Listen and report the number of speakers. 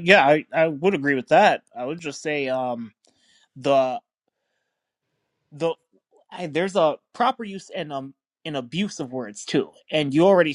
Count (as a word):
one